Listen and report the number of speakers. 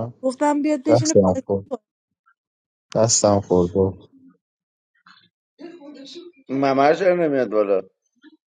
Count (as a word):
three